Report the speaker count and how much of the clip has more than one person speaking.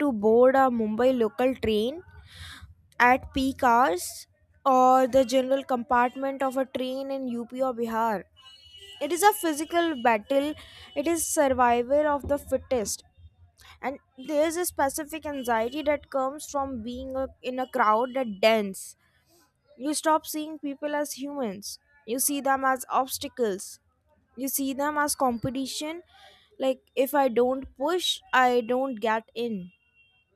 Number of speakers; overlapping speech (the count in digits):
1, no overlap